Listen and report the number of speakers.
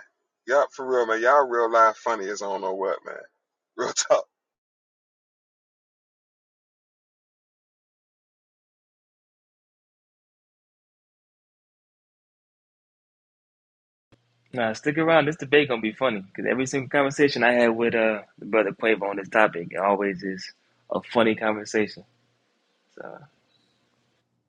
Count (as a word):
two